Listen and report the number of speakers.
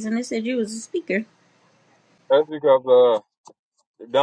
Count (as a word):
two